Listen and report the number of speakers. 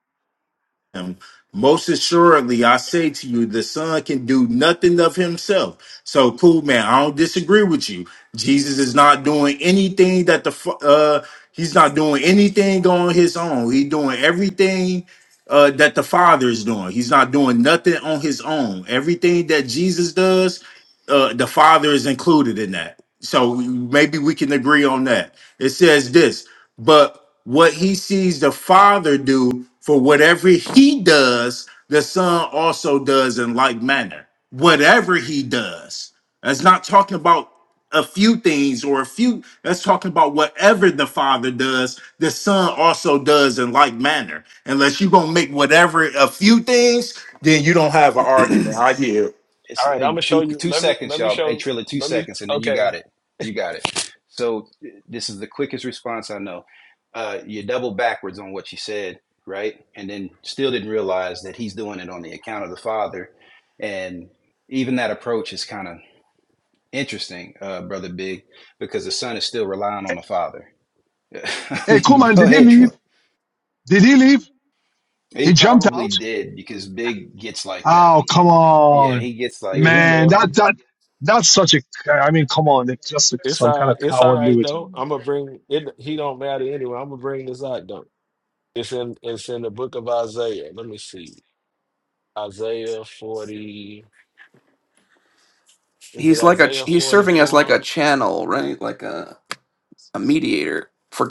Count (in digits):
5